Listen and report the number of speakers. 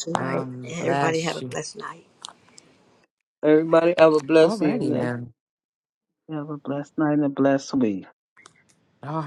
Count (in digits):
4